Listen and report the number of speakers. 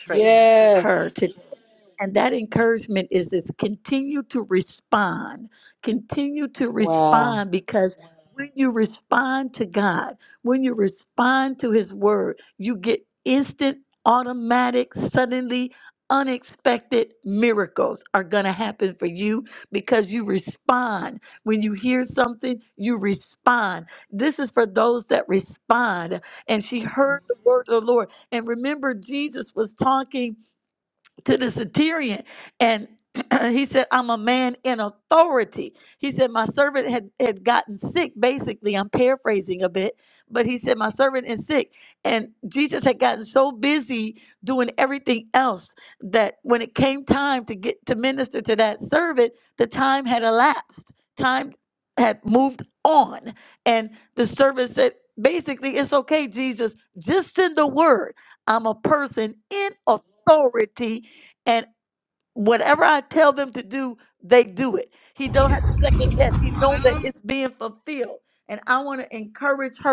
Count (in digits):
2